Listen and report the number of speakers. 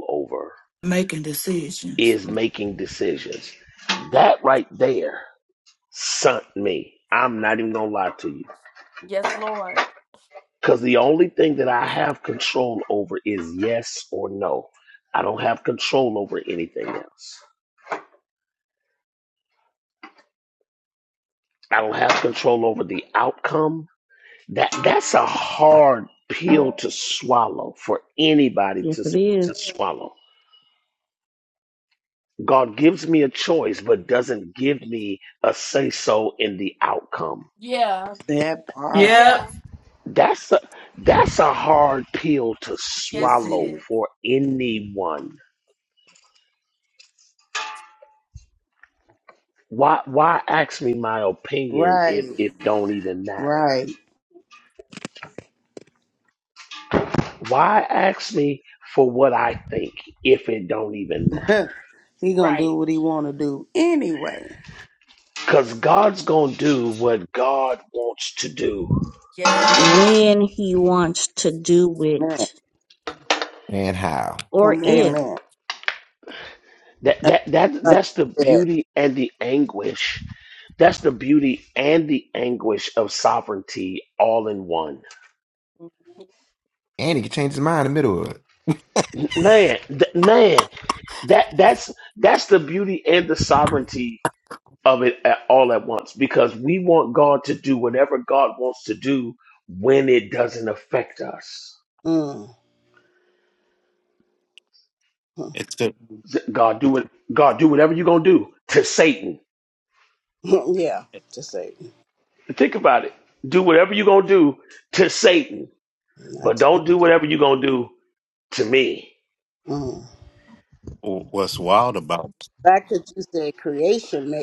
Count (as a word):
eight